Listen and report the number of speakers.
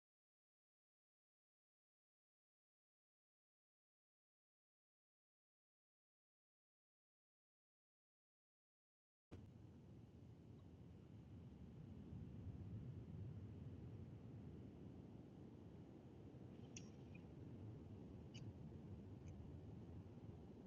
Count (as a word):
zero